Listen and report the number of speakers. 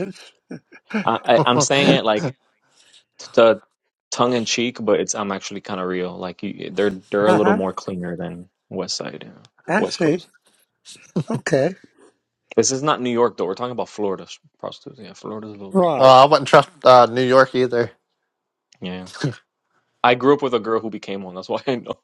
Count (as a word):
three